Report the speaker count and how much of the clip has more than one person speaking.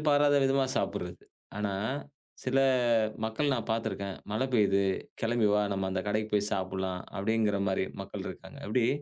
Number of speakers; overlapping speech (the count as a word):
one, no overlap